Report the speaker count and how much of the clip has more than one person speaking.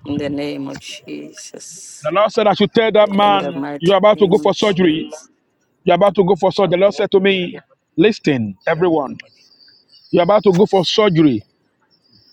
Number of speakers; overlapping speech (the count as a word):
two, about 15%